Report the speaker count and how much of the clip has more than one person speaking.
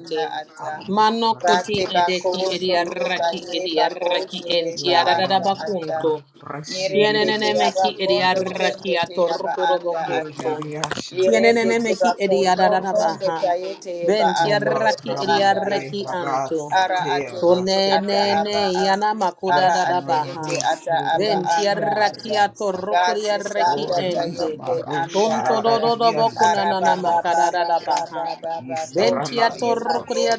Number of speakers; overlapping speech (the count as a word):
three, about 86%